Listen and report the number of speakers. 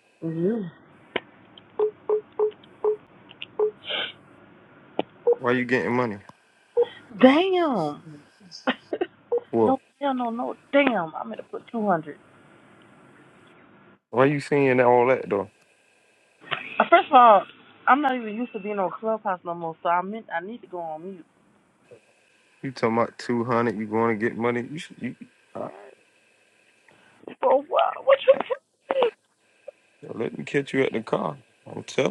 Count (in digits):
2